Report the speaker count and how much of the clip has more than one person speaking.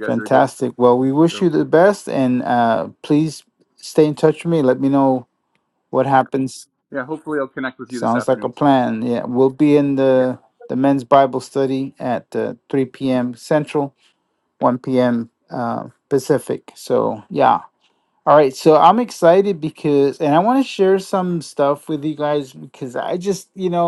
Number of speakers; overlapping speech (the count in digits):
2, about 5%